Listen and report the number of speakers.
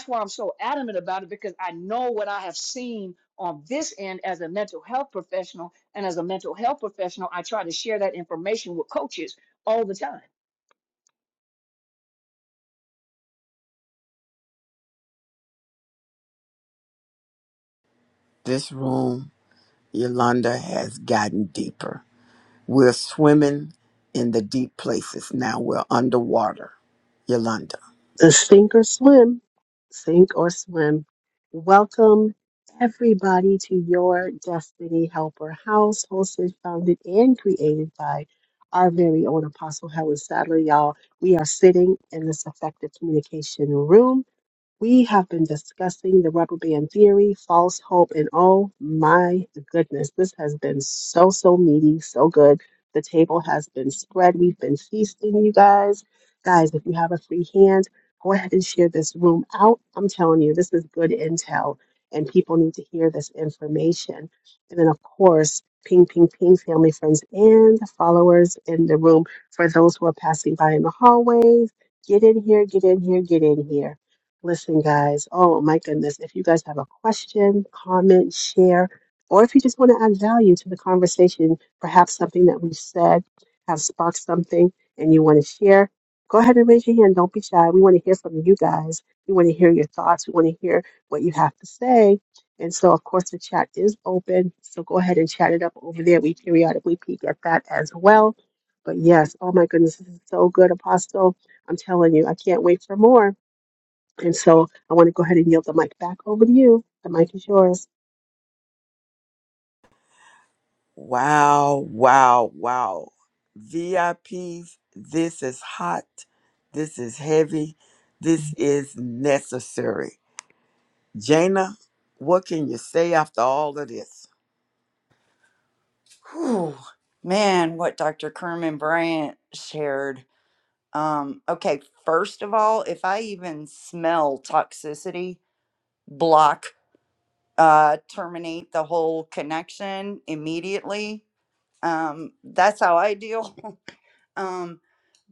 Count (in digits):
4